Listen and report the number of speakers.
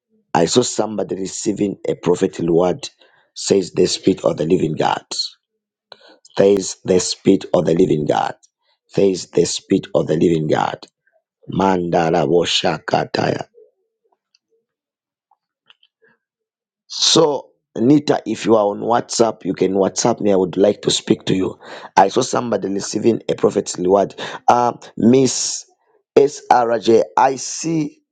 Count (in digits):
1